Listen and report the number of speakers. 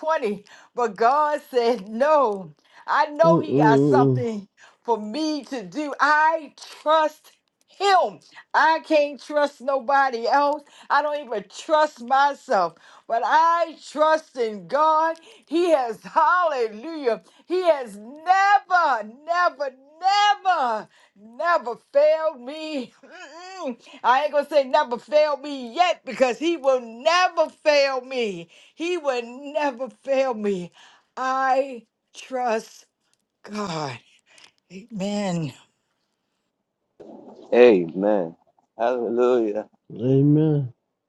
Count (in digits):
3